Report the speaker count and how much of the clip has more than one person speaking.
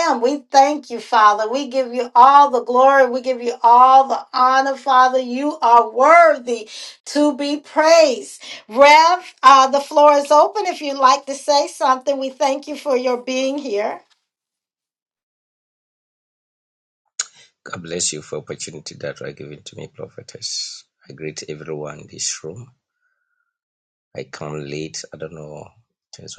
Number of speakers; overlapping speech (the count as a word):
two, no overlap